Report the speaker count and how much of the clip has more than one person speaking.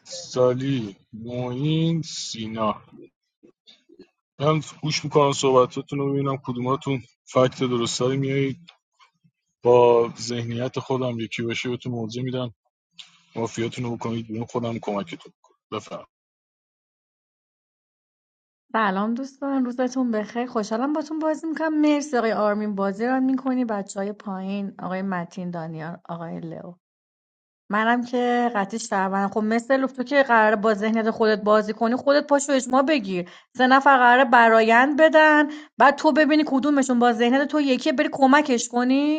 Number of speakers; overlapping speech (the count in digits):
2, no overlap